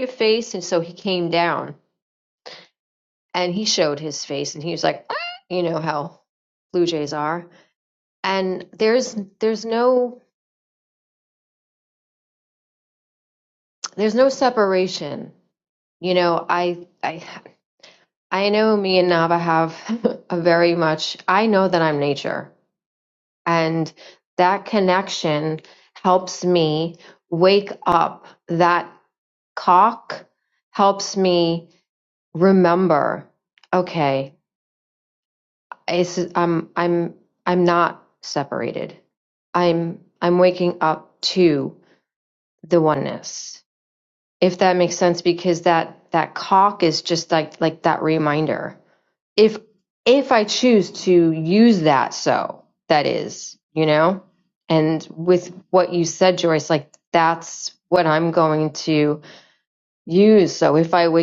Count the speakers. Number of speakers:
one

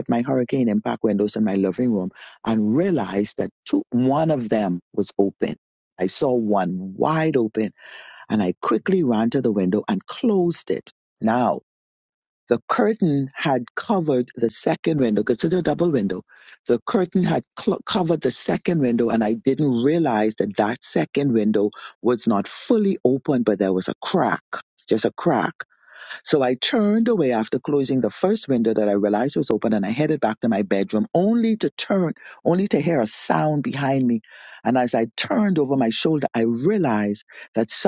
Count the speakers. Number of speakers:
one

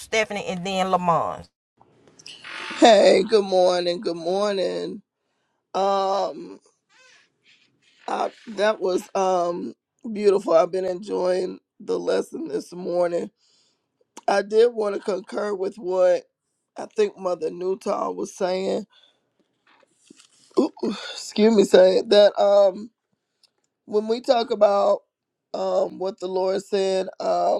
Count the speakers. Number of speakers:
two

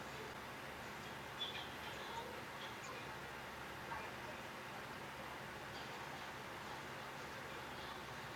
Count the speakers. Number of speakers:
zero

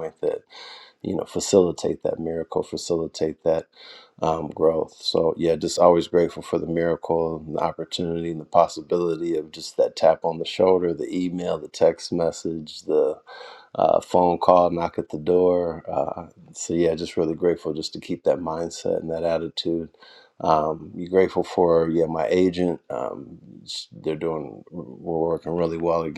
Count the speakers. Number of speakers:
one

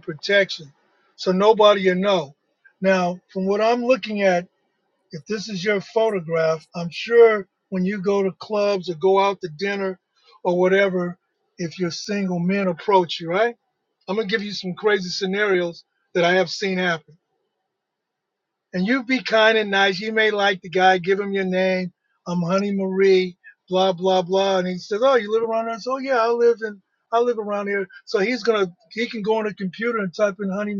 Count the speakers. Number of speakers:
one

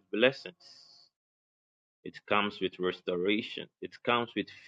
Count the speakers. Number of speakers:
one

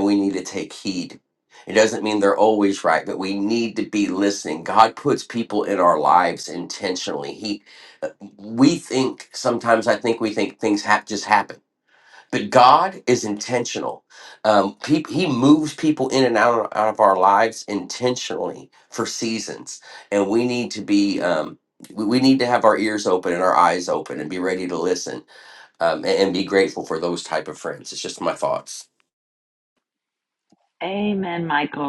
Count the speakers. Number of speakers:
two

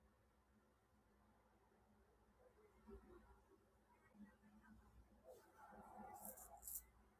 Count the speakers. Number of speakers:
zero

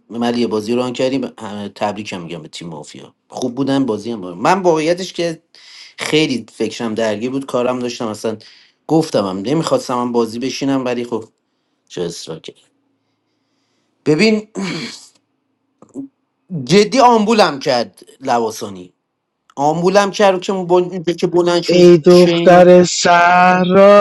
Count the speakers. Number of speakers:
two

